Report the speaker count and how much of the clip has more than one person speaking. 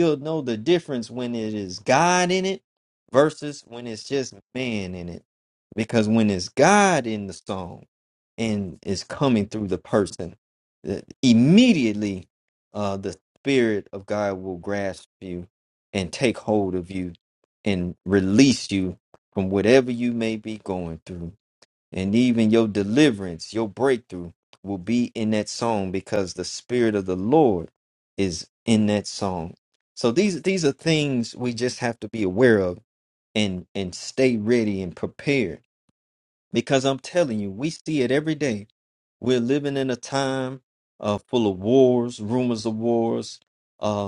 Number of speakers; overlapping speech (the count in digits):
1, no overlap